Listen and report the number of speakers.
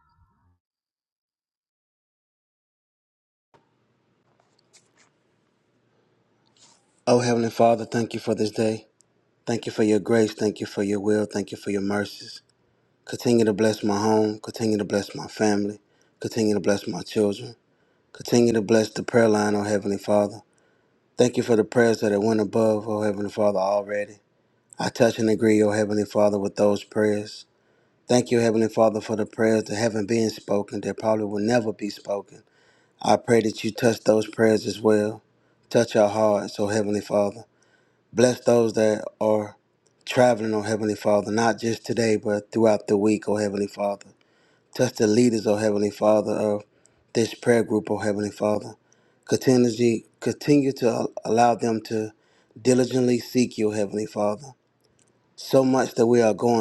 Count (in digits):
1